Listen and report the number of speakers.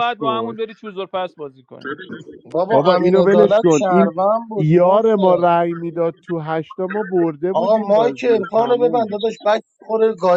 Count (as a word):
three